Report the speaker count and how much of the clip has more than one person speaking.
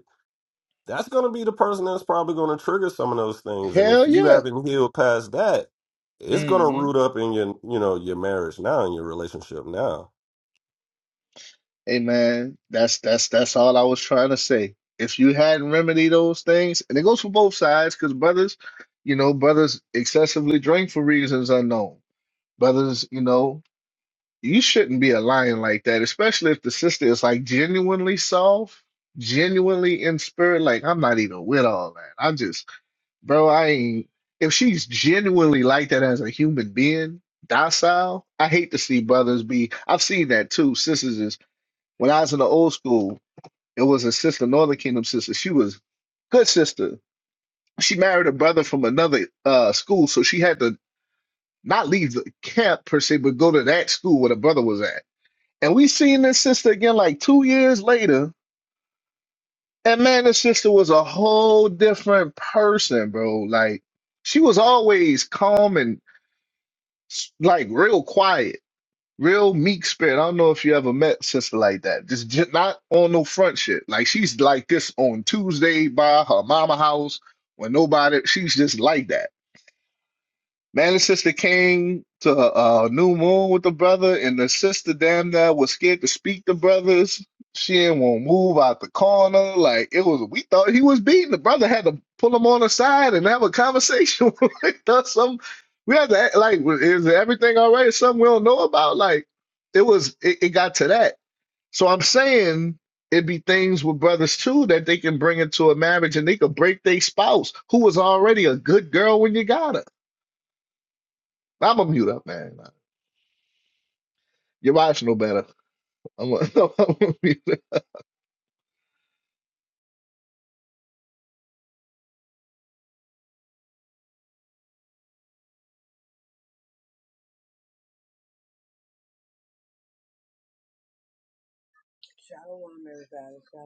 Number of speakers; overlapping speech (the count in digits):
3, about 1%